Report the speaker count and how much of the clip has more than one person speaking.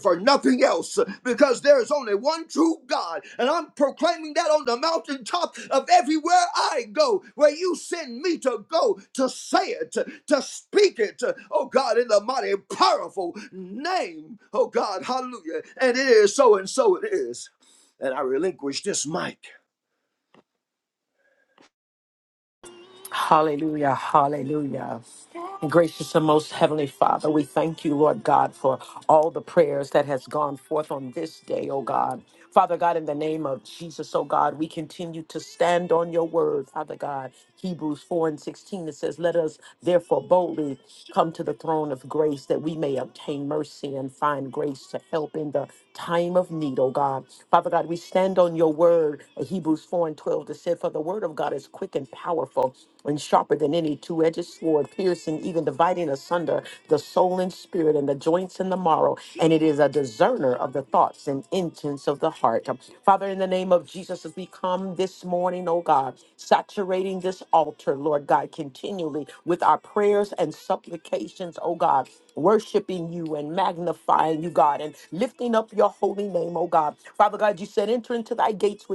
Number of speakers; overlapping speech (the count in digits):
2, no overlap